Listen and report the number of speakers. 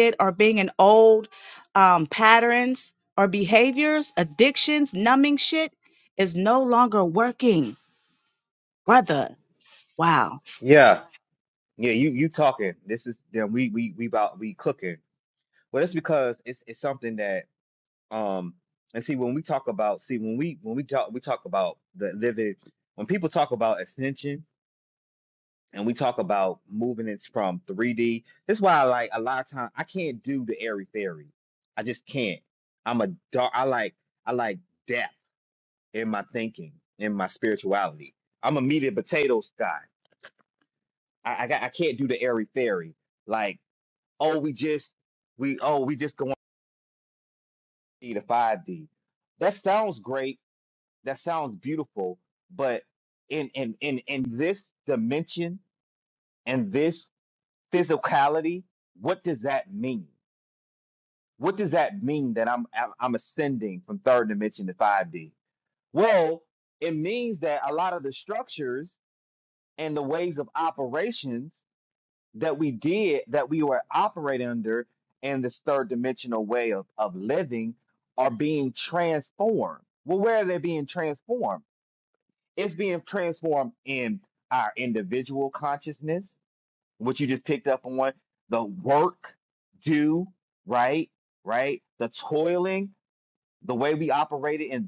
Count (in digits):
2